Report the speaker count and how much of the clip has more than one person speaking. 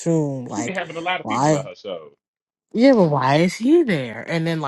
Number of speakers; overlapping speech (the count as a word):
two, about 12%